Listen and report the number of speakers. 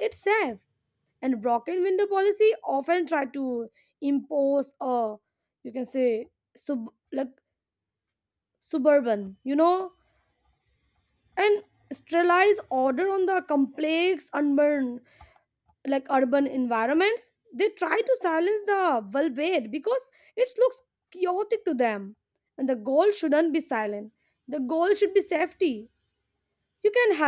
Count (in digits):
1